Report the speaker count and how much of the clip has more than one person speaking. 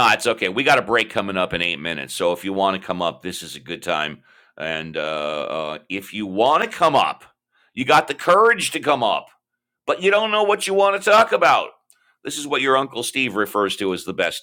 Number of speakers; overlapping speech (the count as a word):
one, no overlap